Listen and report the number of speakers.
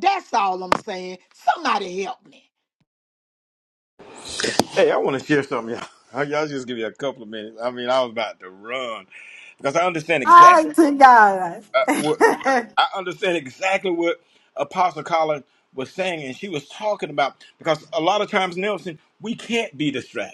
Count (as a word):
three